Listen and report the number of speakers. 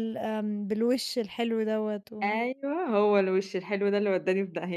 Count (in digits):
2